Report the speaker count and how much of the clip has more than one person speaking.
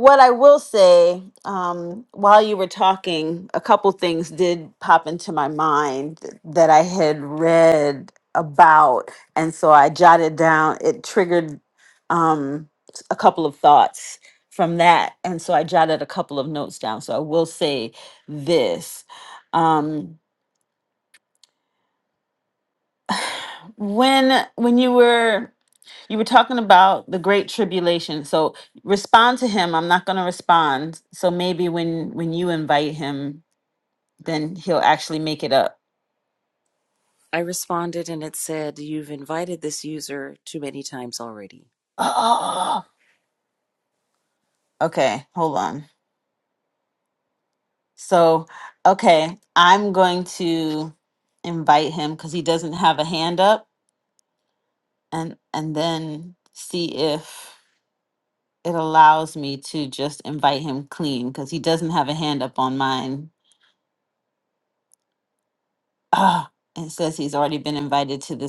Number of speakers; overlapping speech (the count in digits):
2, no overlap